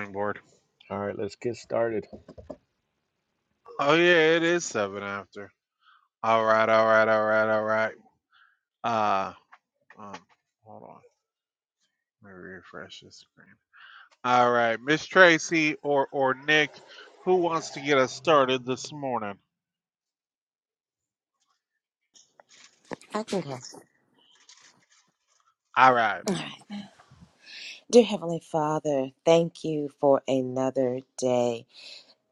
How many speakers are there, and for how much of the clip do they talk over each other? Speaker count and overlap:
3, no overlap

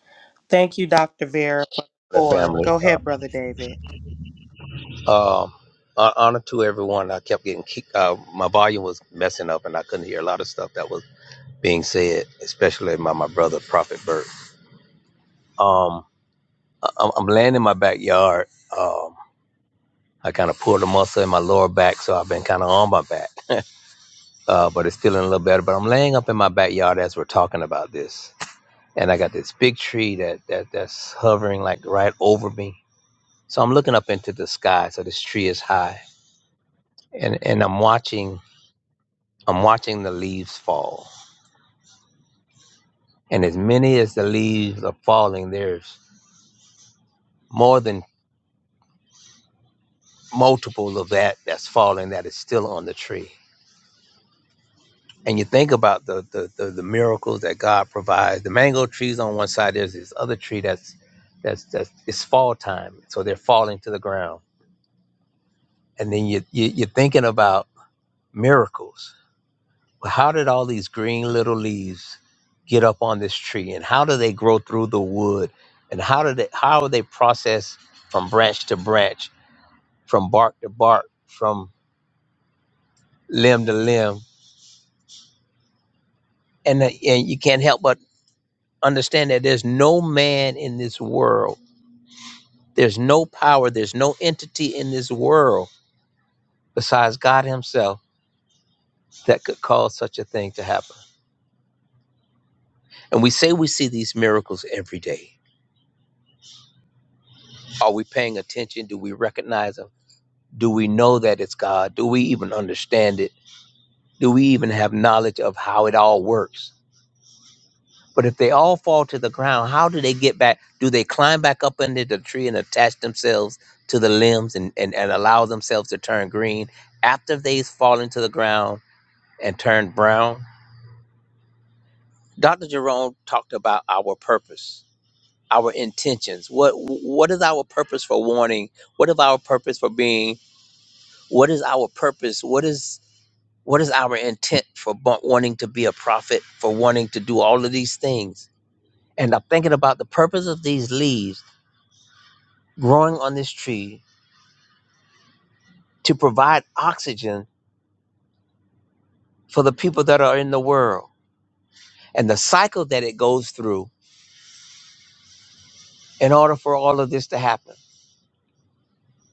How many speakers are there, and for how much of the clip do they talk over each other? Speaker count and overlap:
2, under 1%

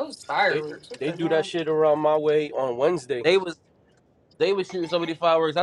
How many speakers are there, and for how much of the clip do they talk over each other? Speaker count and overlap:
3, about 12%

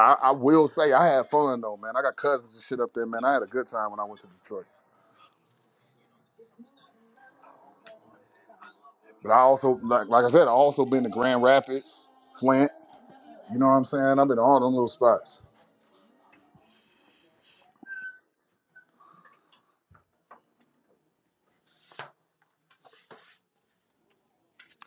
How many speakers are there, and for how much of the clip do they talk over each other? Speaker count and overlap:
1, no overlap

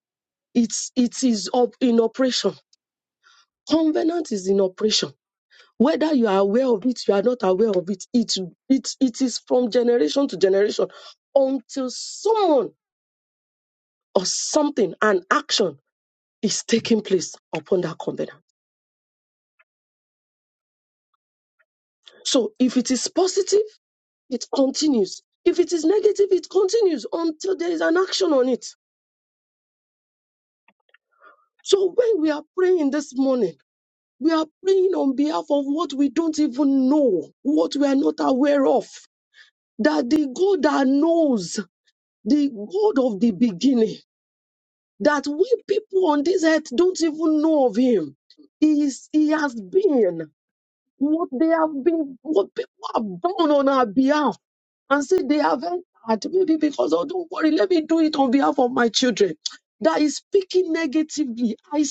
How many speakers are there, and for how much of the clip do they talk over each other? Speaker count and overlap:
1, no overlap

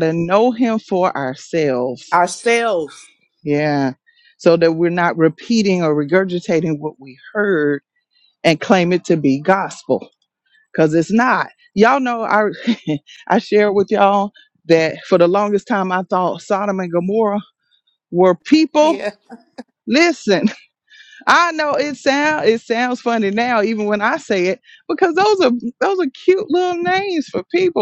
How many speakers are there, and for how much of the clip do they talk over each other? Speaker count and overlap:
2, about 1%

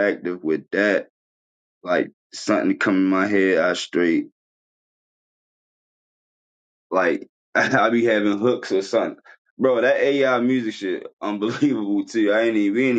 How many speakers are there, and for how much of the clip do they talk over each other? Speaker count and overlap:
1, no overlap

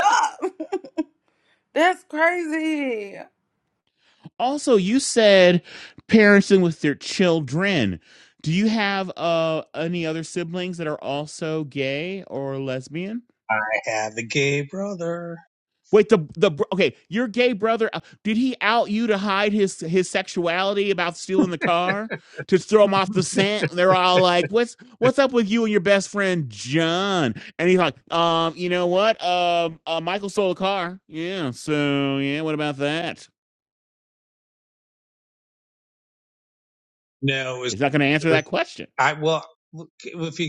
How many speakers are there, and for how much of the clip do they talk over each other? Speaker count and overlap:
3, under 1%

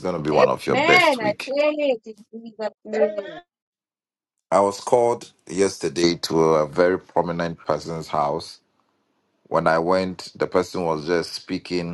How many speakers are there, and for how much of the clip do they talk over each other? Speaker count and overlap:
2, about 7%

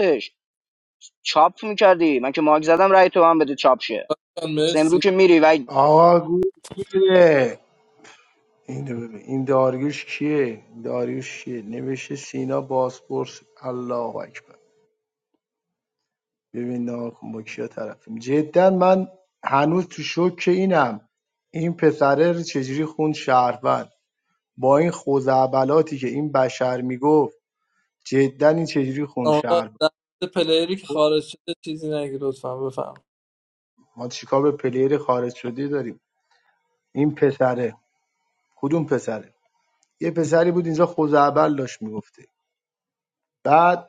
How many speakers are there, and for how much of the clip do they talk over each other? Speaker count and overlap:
3, about 2%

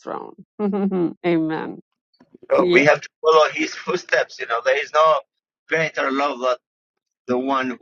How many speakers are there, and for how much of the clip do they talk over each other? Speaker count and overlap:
2, about 4%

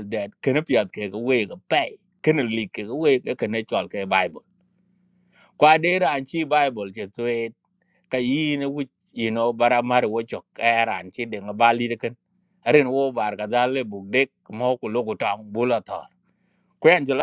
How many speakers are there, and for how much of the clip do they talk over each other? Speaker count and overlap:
1, no overlap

